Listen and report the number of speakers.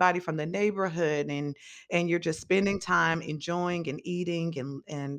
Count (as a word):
one